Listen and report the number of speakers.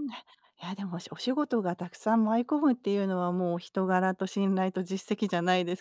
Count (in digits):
1